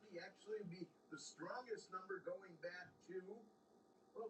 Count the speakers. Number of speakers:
0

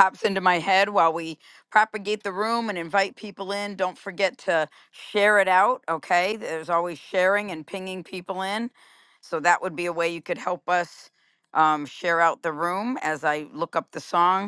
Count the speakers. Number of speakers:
1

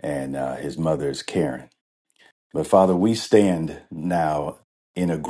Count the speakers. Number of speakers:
1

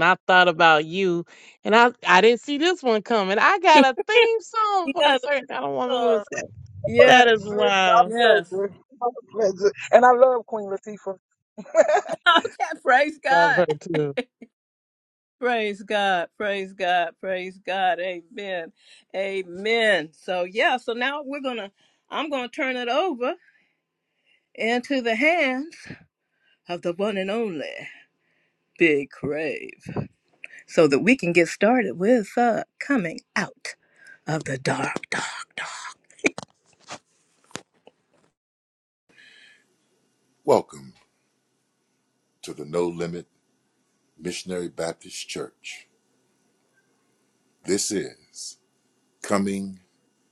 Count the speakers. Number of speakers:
4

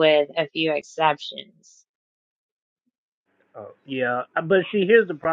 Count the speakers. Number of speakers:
2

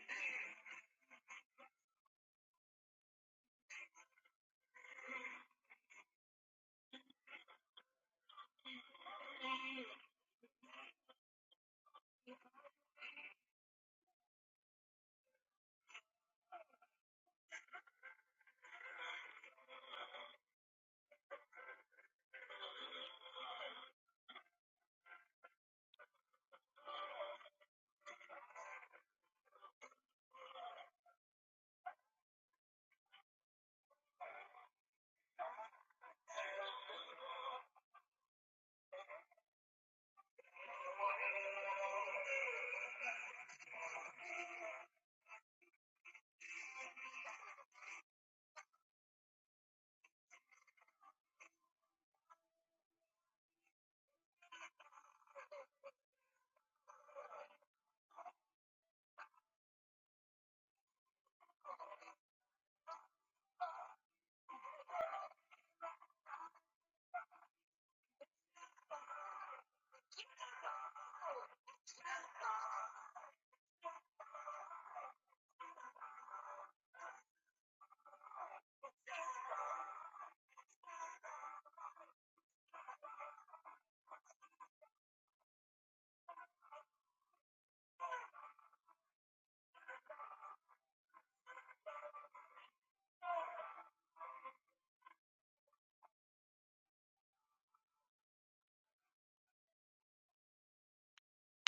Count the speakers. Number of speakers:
0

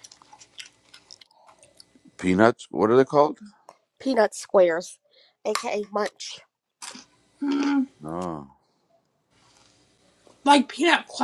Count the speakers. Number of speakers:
3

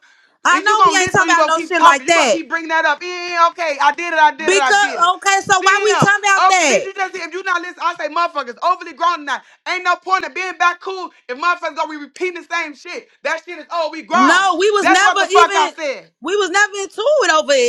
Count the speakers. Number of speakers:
2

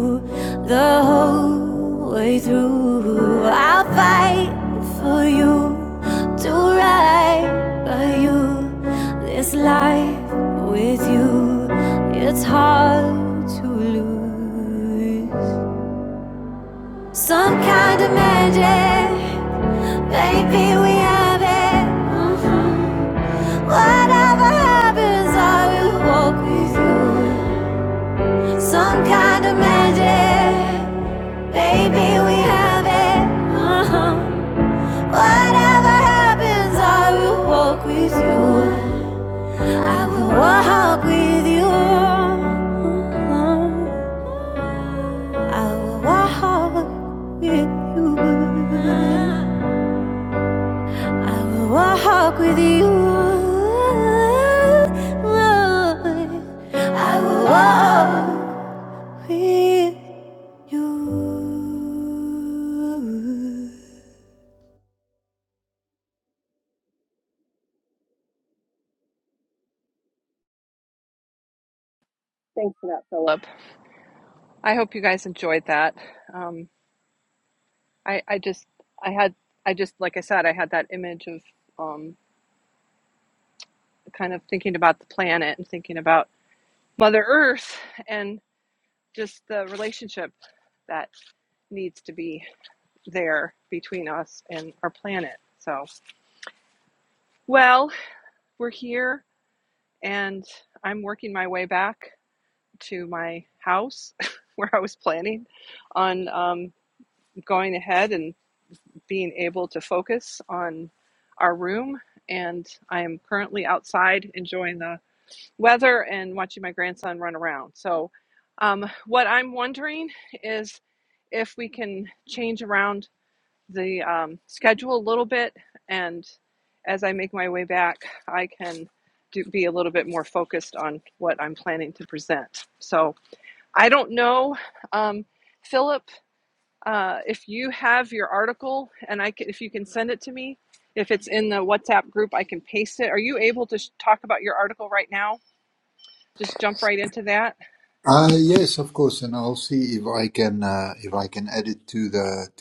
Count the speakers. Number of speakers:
3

